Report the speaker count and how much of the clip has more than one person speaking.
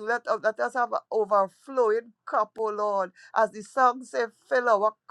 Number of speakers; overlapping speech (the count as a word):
one, no overlap